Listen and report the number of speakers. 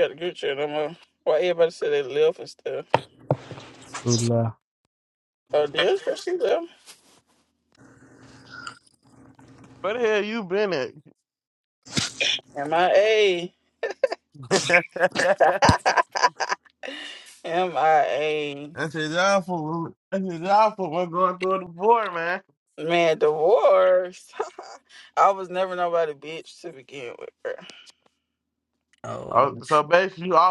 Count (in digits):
3